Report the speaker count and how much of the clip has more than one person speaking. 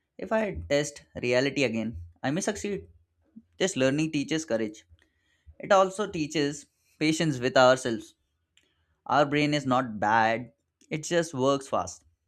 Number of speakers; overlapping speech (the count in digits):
1, no overlap